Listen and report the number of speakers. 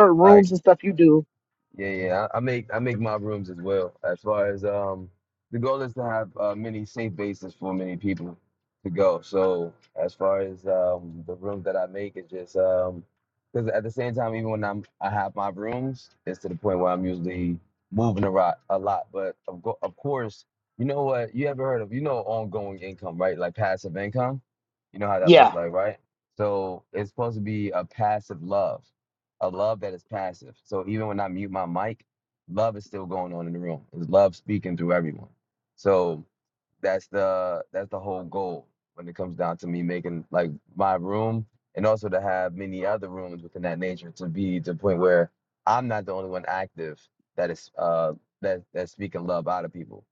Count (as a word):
two